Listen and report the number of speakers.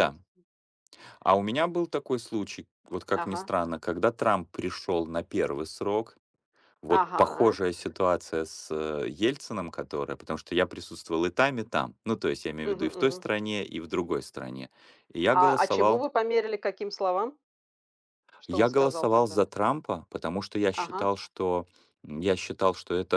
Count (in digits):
2